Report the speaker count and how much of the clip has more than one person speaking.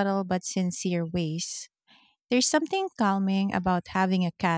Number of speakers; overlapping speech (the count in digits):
1, no overlap